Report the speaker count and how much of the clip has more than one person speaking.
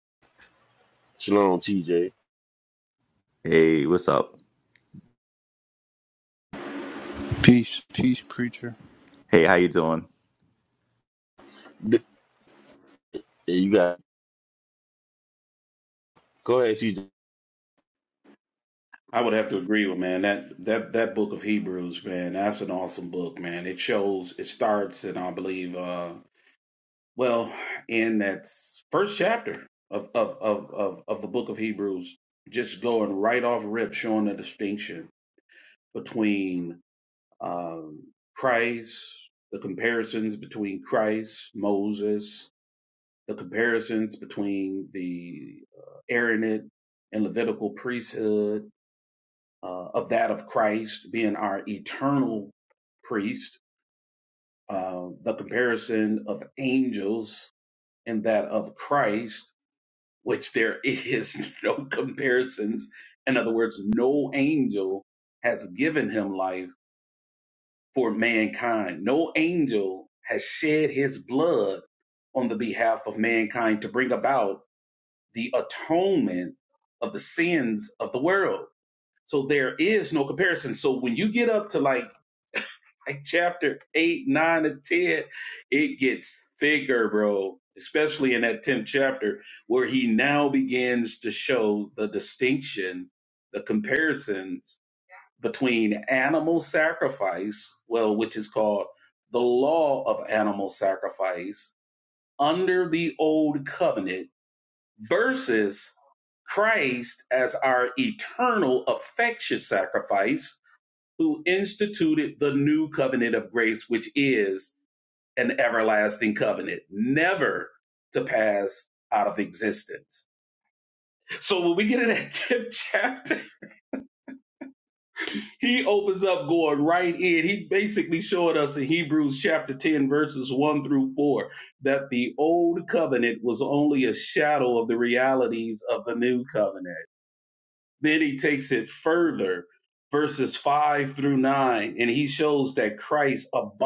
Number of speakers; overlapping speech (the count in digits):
4, no overlap